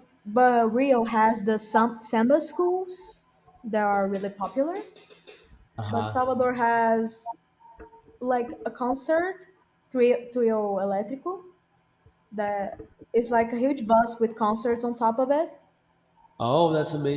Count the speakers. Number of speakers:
two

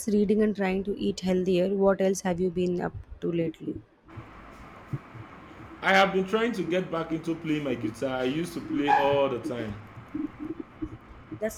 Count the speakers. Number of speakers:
two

